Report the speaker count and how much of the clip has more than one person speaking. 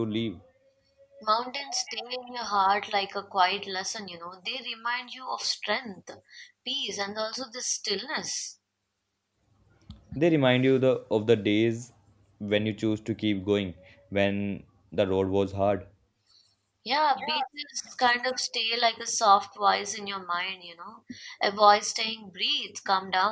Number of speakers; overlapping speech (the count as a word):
two, no overlap